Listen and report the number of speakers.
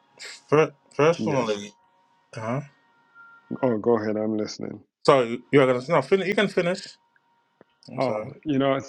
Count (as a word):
two